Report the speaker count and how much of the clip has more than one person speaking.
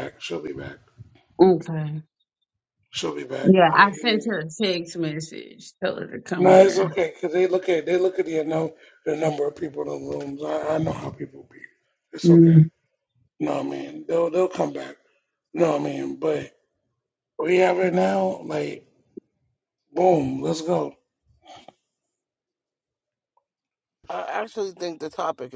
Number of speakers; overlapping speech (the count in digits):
3, about 7%